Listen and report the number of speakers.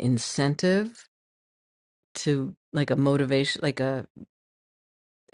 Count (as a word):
one